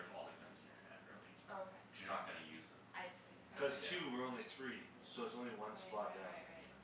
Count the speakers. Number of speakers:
3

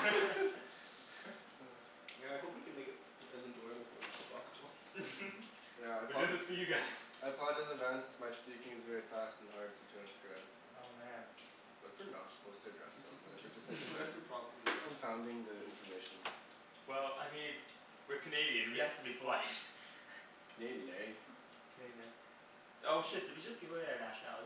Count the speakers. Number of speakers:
3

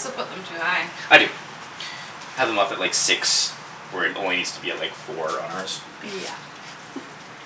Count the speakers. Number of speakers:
2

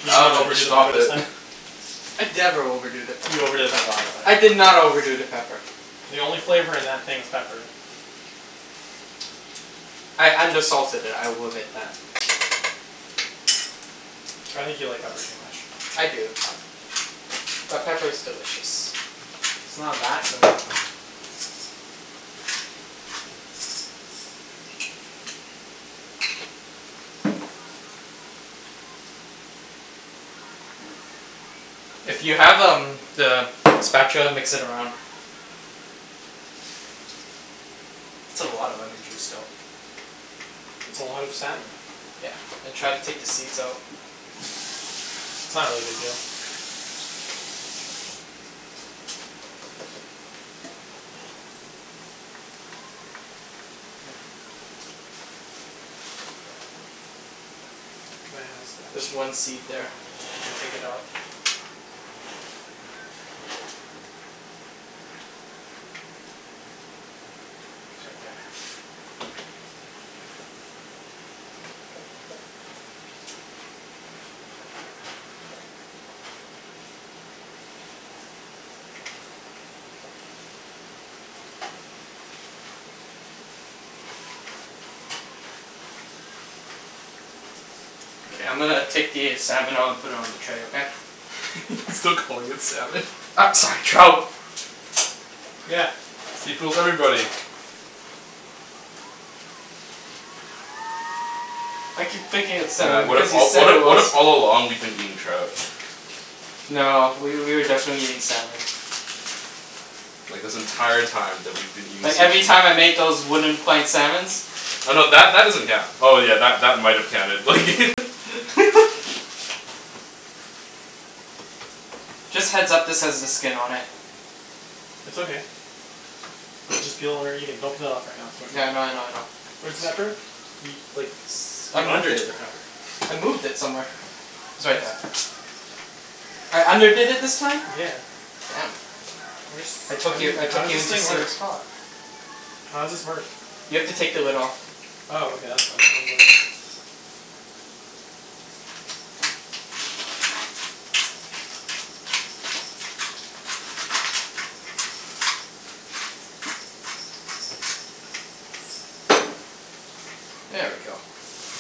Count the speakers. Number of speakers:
3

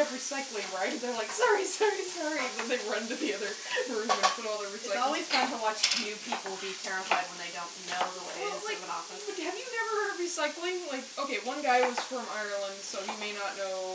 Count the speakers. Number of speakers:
2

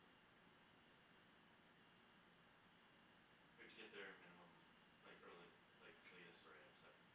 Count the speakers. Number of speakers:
1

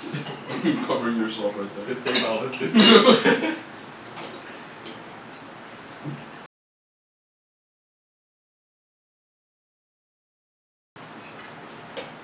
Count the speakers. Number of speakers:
2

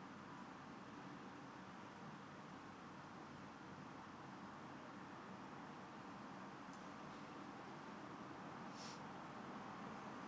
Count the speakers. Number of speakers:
0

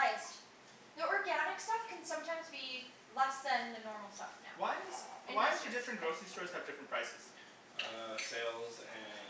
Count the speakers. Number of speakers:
3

